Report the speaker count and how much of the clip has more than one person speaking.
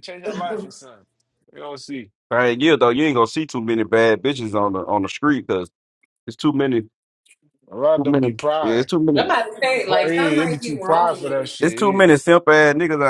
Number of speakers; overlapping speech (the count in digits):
3, about 26%